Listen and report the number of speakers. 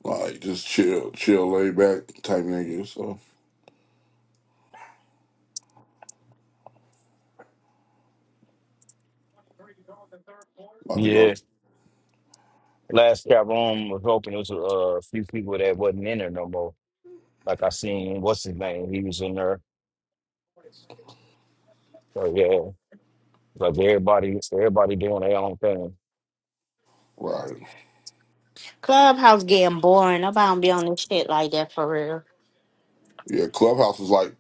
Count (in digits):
3